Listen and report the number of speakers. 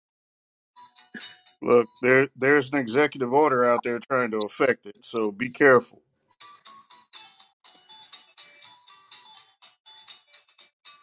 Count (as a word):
one